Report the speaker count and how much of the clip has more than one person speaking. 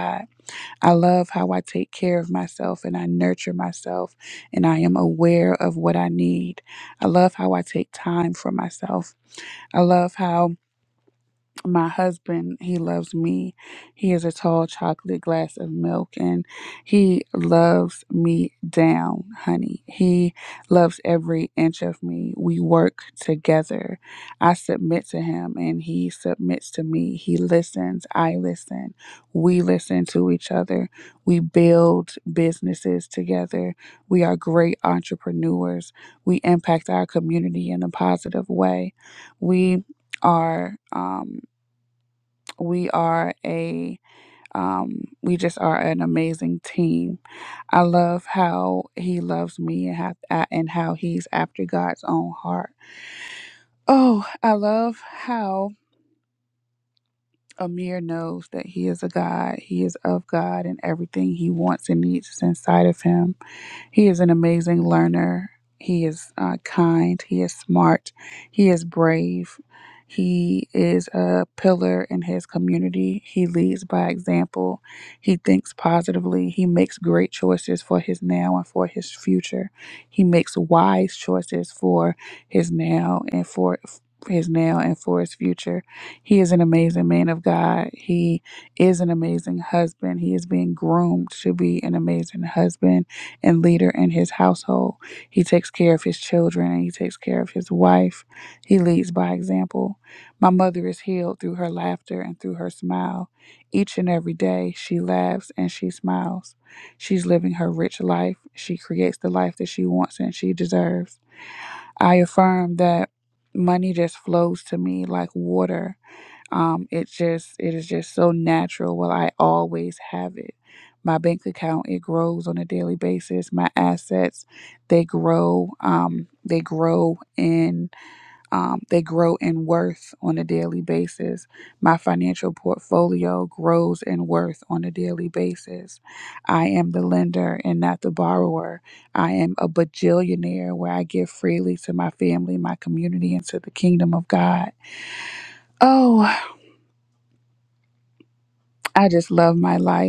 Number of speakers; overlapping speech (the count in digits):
1, no overlap